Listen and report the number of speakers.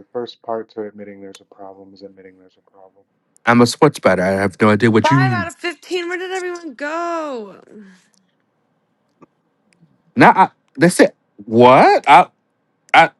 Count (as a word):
three